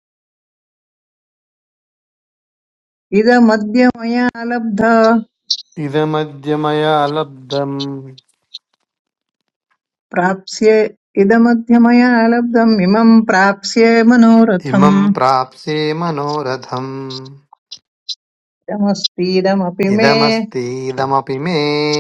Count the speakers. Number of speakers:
2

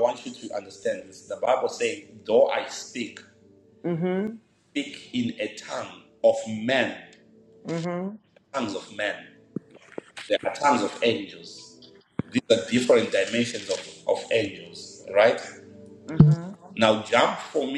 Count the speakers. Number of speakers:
2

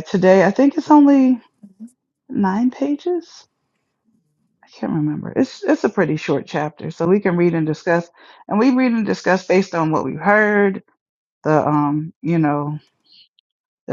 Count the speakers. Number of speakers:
1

